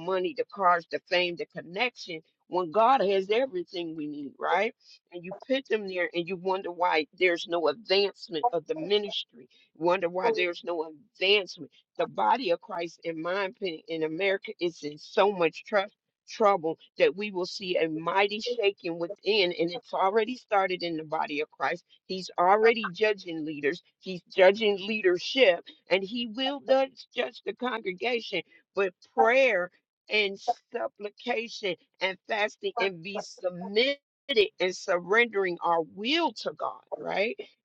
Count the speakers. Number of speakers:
1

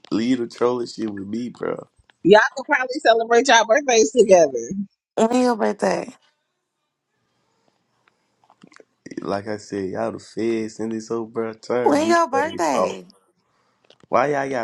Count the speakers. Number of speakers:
3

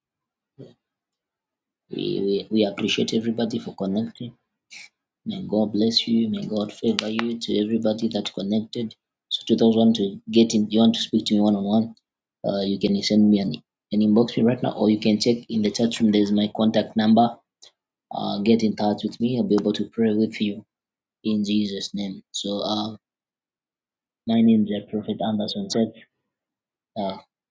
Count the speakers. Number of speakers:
1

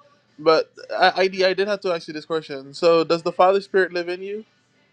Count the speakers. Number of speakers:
1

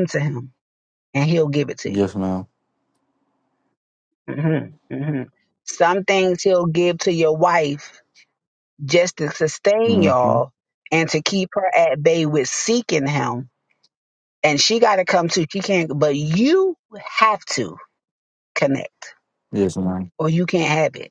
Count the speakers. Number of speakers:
2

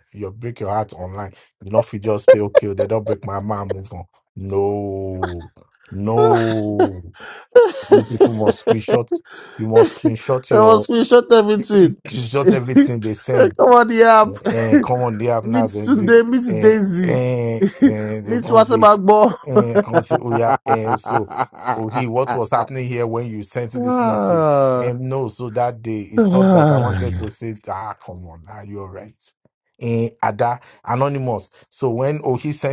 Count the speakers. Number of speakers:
2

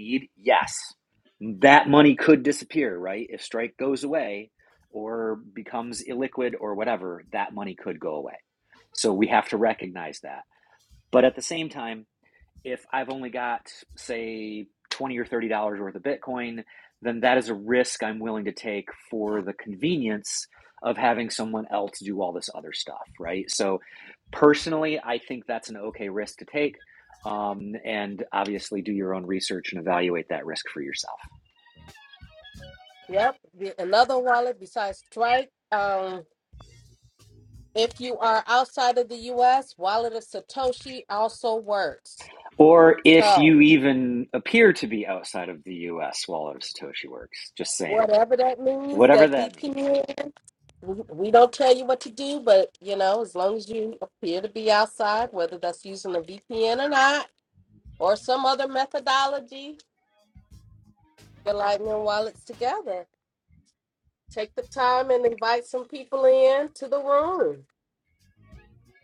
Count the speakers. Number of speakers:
2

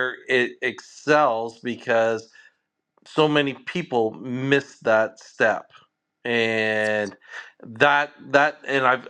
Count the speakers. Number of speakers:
1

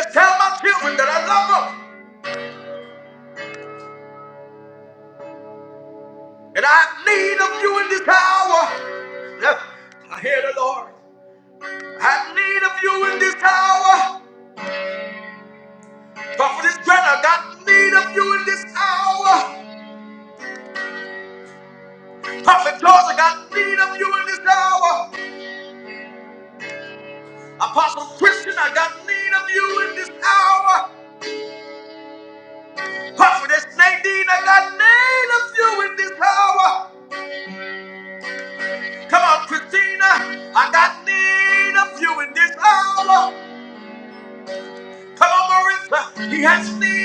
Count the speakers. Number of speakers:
1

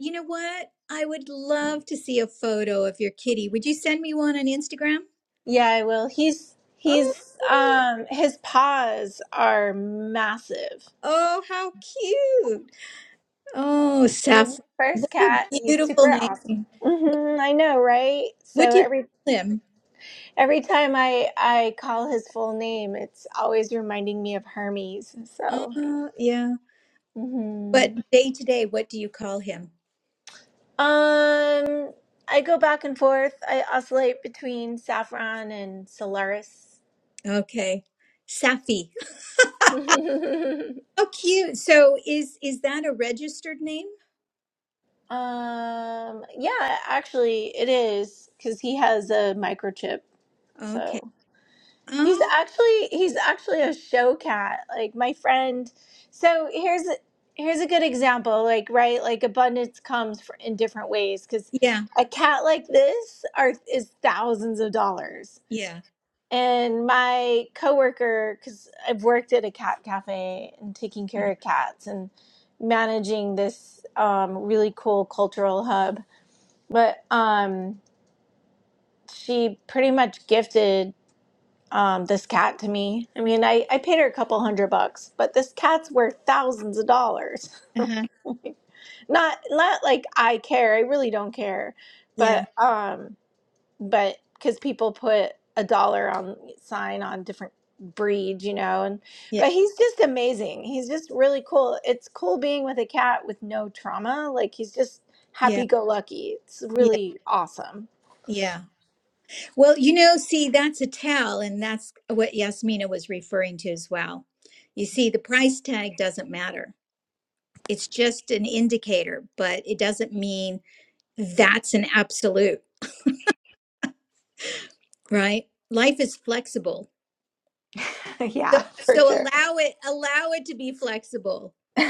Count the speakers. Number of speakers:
2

